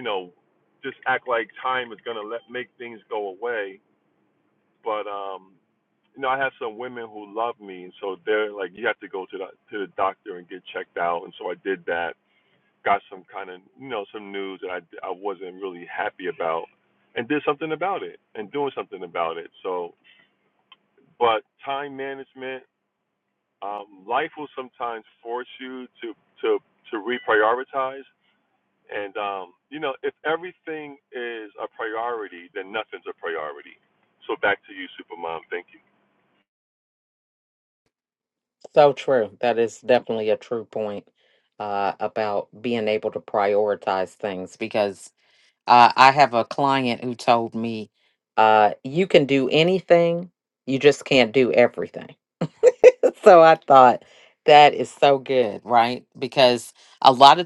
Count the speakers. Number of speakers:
two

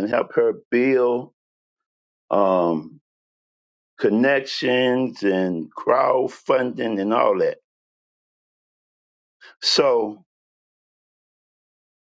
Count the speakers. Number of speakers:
one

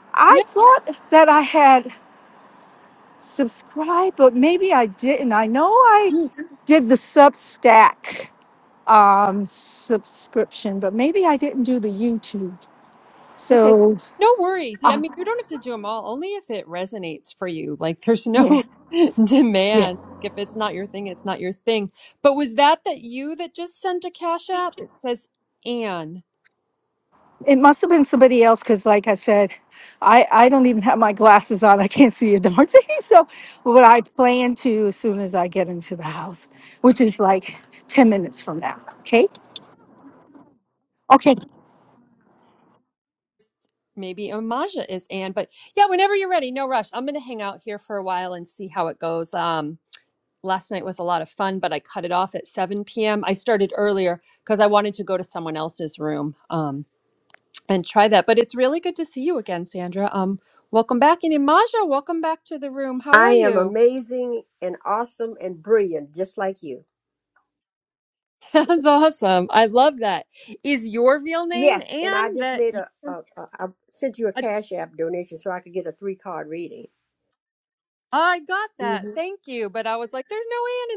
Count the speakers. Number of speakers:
three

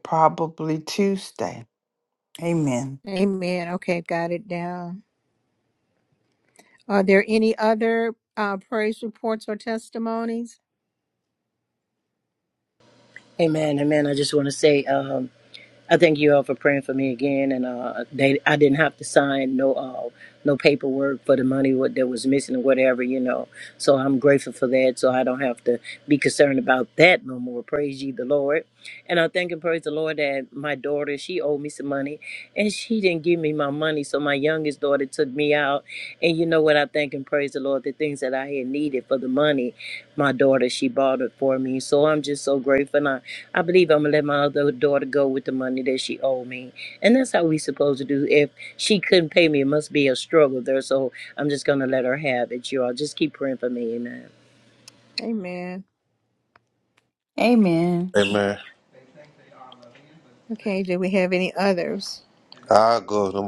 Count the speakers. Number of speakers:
four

